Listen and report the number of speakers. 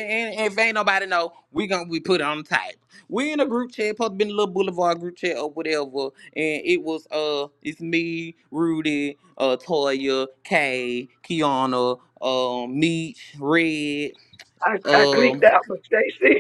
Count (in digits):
2